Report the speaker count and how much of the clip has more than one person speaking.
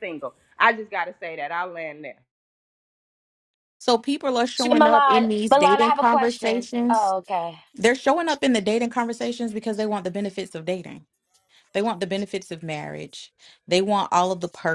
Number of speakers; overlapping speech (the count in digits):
3, about 16%